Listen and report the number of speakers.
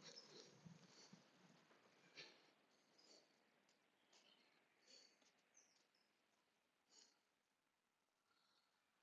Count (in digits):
0